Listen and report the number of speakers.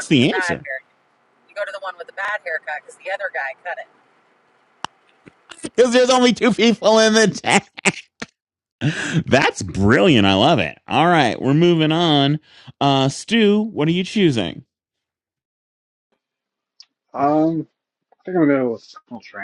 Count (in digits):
3